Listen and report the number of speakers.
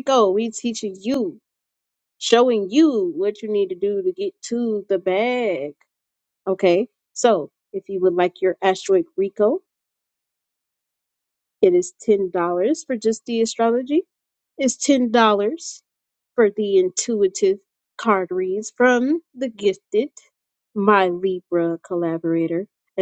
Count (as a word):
one